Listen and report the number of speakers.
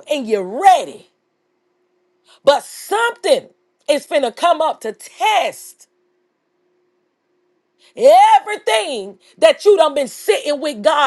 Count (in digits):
1